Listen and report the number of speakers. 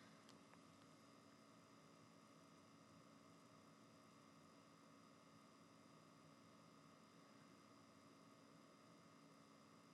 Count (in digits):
0